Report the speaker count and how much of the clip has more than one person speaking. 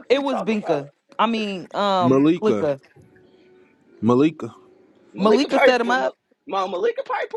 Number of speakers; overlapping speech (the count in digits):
3, about 33%